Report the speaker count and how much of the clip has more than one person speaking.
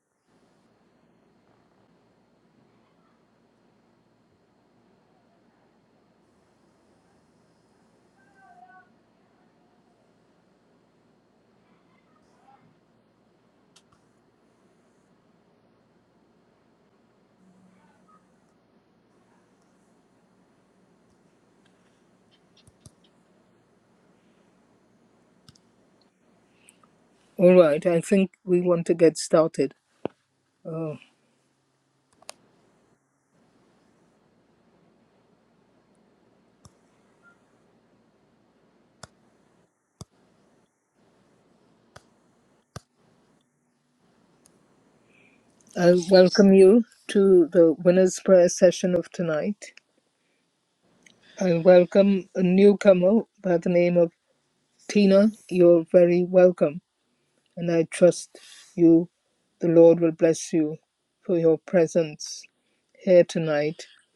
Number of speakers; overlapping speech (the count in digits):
1, no overlap